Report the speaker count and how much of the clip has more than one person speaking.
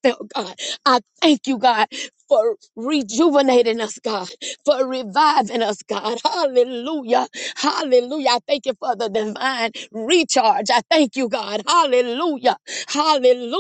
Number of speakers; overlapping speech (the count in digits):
1, no overlap